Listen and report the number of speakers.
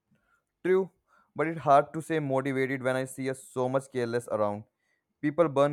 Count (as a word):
one